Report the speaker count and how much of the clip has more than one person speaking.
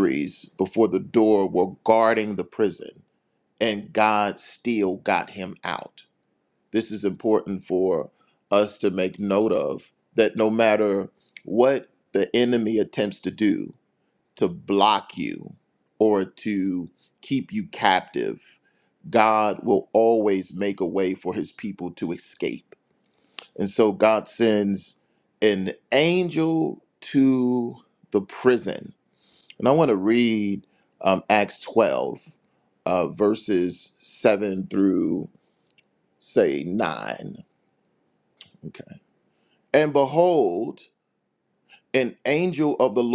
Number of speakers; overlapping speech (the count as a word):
one, no overlap